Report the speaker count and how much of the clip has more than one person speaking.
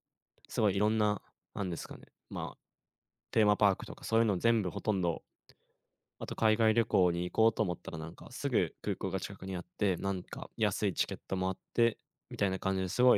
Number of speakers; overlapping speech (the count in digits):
1, no overlap